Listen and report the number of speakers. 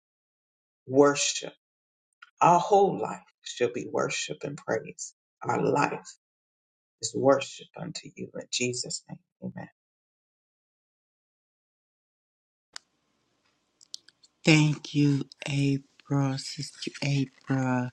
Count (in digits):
2